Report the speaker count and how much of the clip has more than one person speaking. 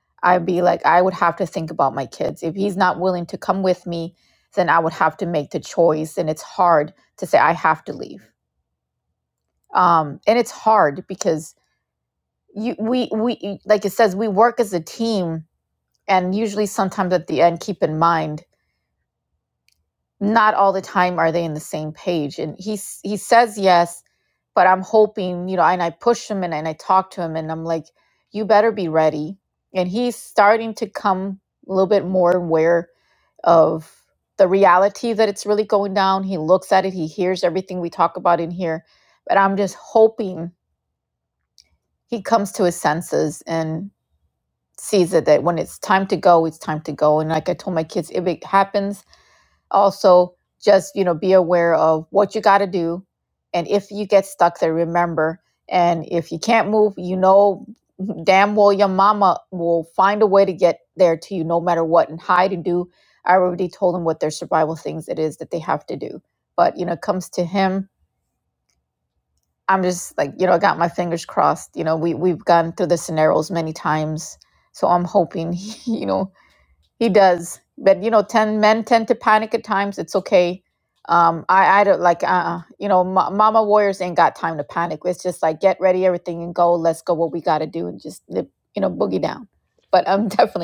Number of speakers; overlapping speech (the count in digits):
1, no overlap